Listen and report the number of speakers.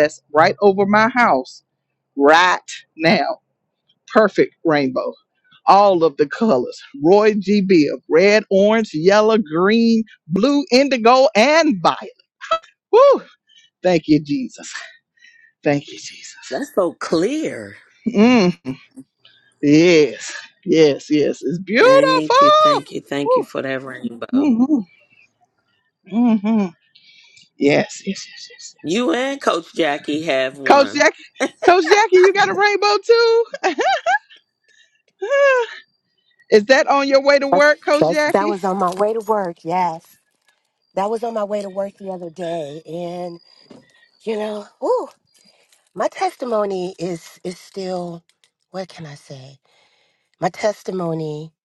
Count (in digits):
3